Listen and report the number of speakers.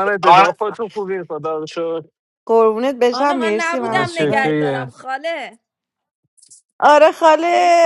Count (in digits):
3